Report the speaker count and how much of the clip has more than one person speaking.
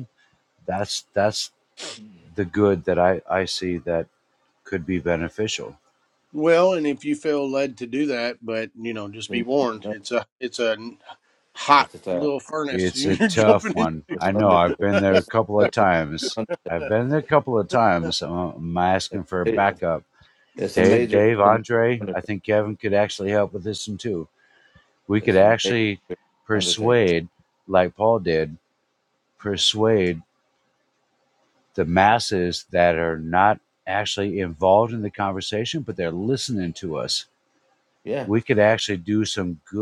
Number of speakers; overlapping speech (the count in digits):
3, about 15%